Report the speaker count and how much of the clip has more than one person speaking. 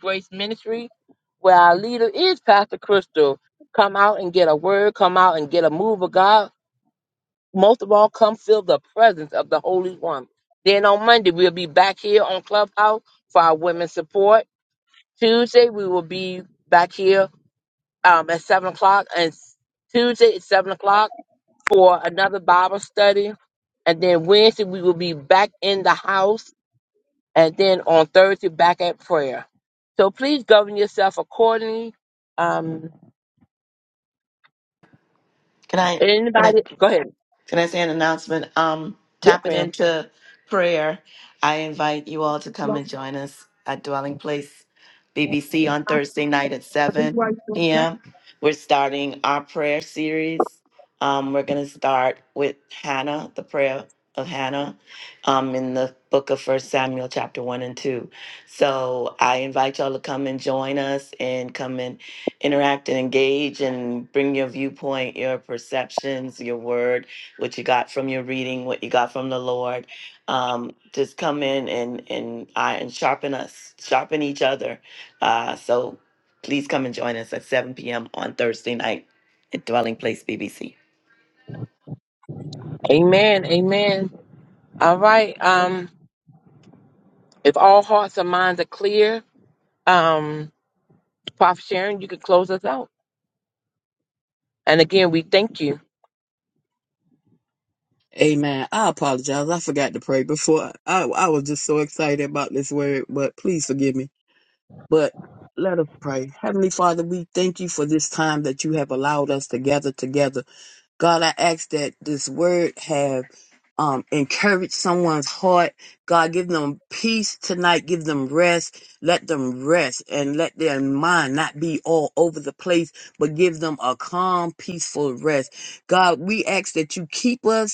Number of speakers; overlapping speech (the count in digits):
3, under 1%